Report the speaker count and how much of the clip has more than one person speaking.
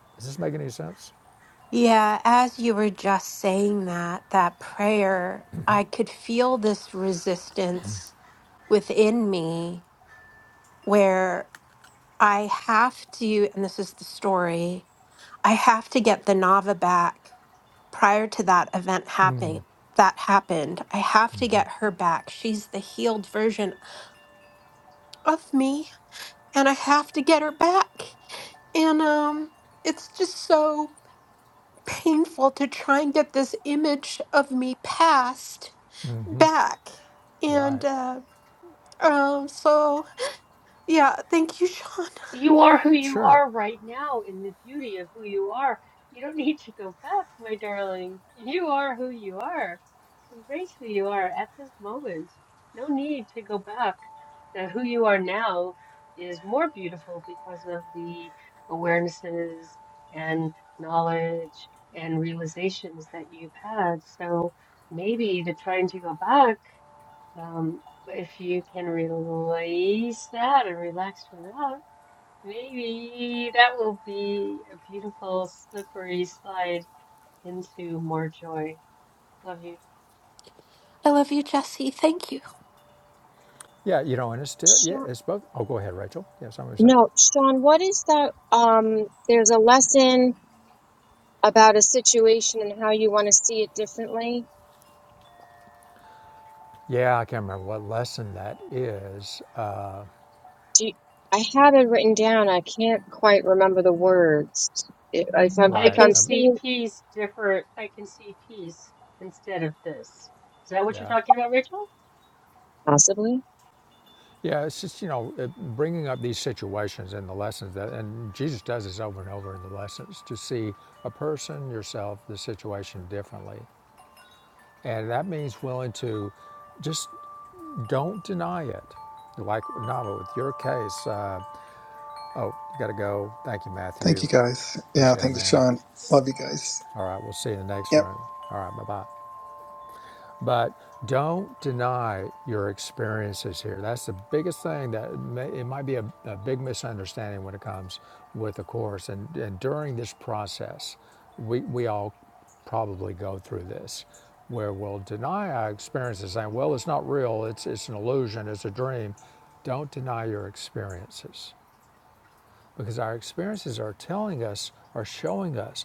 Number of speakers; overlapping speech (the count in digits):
5, about 2%